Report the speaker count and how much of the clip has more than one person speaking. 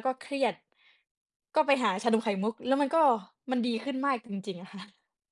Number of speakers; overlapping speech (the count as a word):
one, no overlap